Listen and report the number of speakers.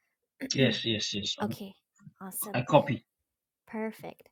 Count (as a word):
two